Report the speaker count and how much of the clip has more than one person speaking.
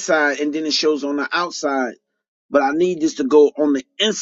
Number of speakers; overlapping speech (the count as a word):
one, no overlap